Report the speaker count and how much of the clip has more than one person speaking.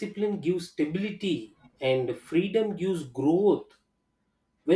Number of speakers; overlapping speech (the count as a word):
one, no overlap